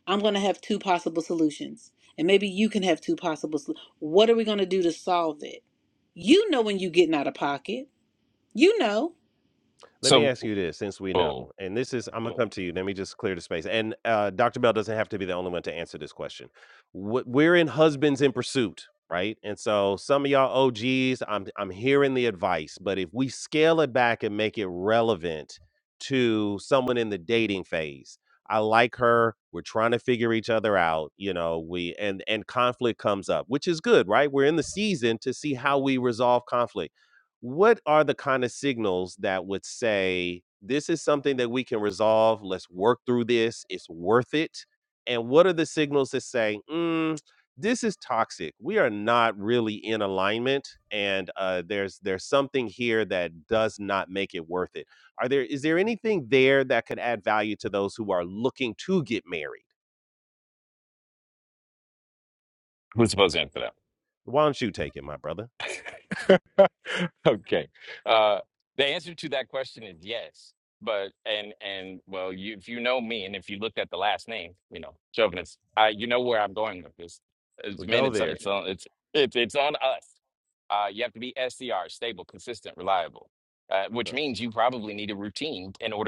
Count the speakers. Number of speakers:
3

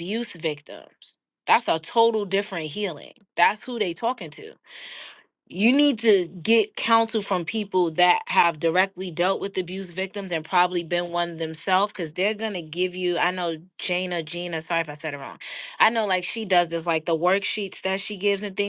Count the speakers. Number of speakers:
1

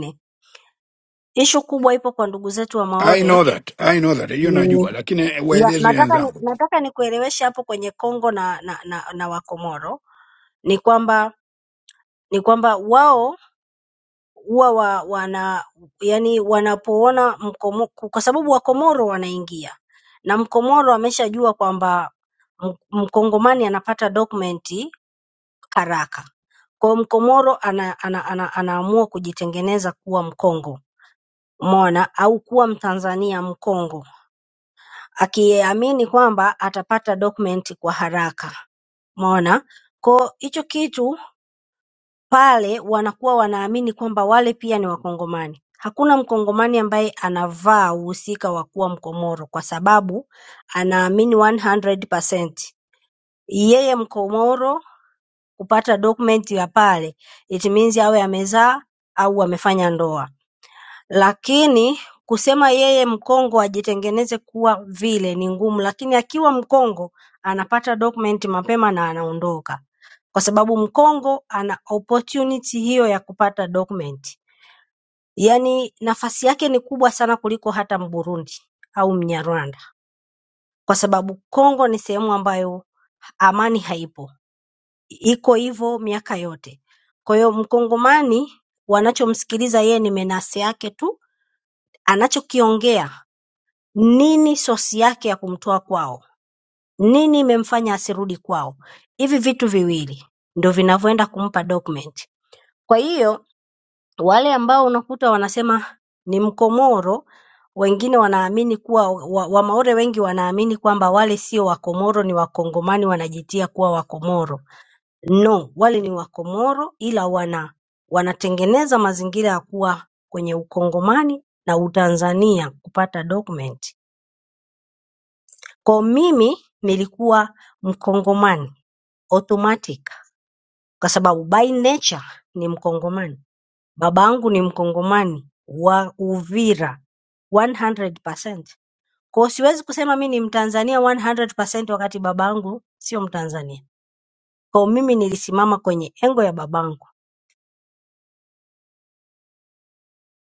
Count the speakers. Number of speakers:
2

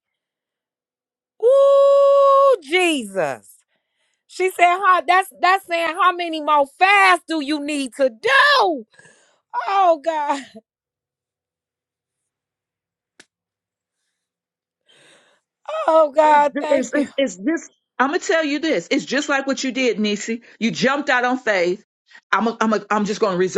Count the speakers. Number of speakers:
2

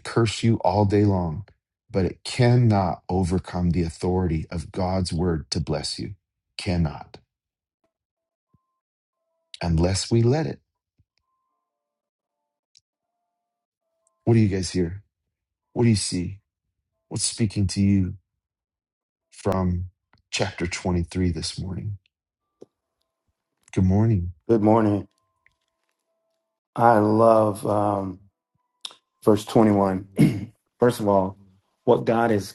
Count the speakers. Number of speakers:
2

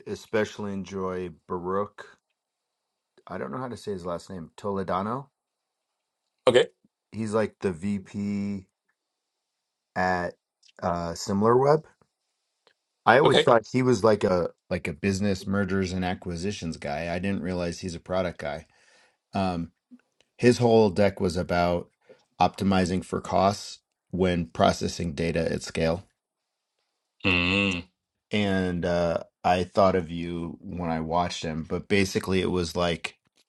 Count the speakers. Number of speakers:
2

